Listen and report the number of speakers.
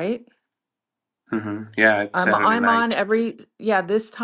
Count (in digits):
2